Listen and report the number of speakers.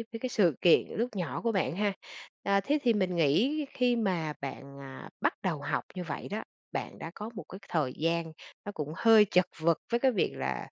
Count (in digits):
1